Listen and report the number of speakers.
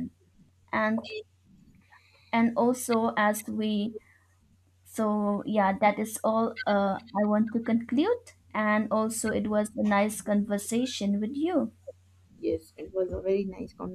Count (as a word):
two